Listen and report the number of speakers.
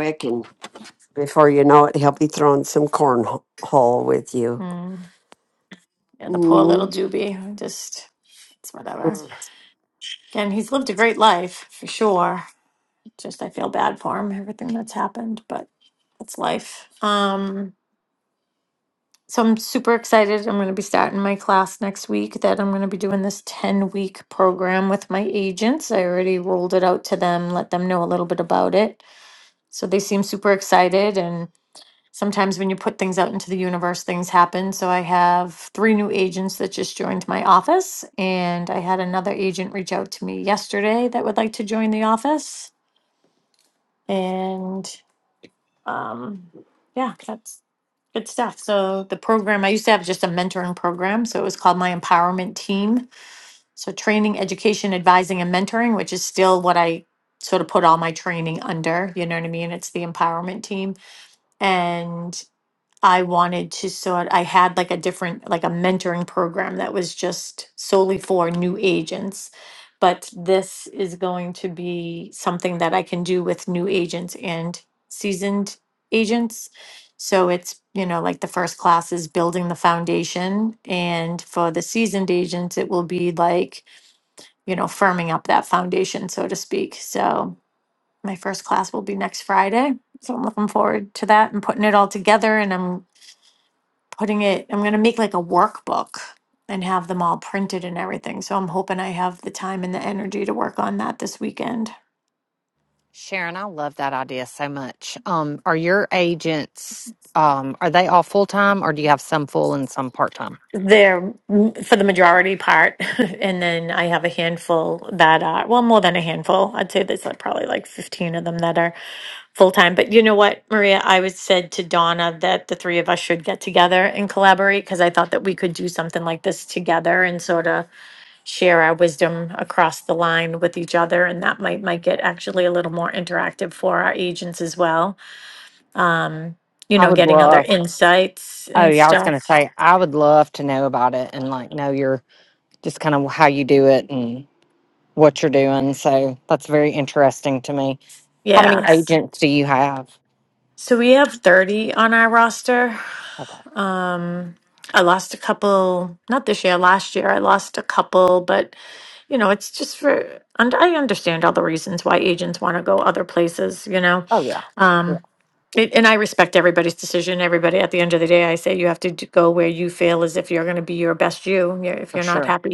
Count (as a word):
three